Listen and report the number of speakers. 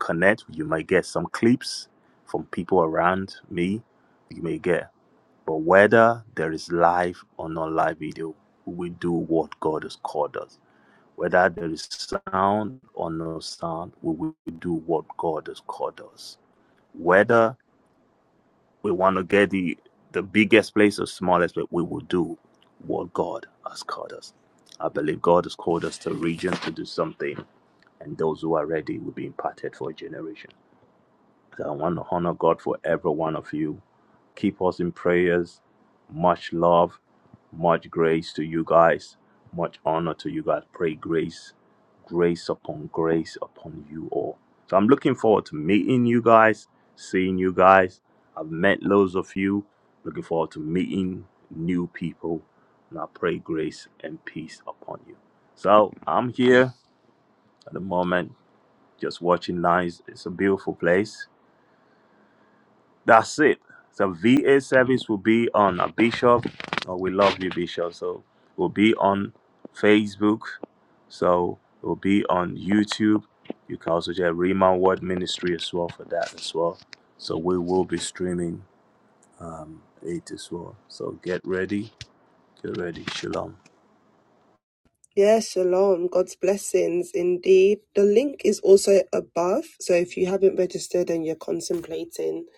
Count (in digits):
2